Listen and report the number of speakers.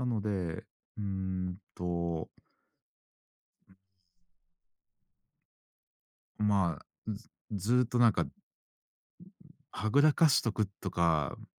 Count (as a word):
one